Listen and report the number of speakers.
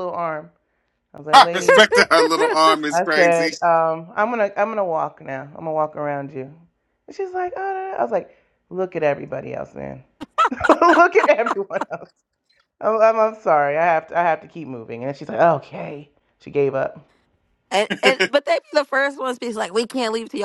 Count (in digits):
3